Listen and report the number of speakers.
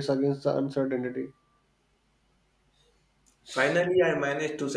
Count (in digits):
2